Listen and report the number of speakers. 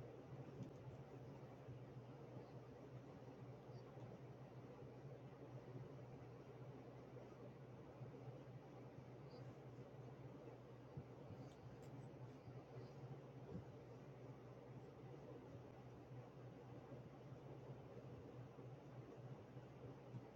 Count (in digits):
0